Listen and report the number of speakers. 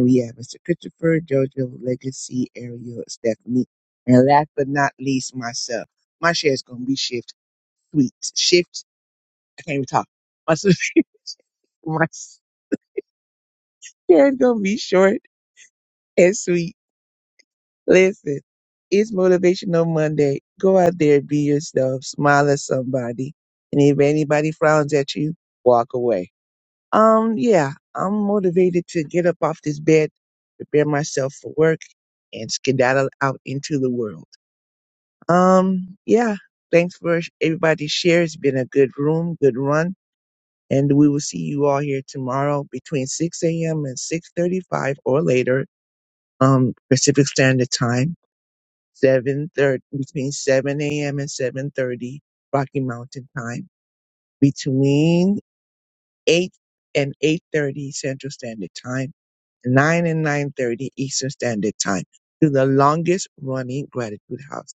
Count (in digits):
1